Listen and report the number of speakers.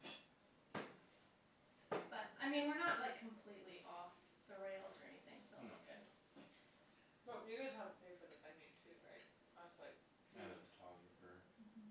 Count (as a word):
three